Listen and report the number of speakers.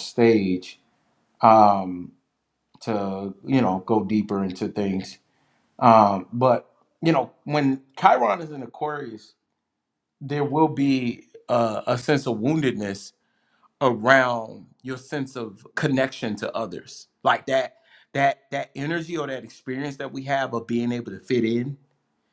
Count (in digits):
1